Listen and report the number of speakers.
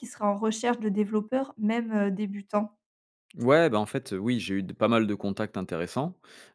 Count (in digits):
2